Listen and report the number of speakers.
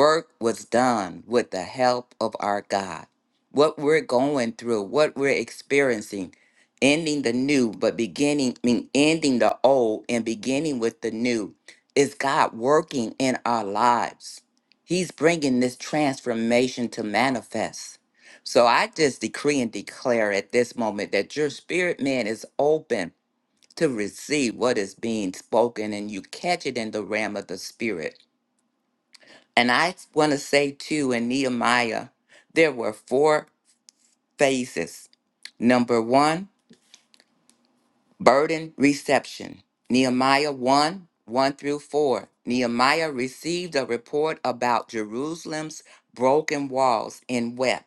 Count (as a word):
one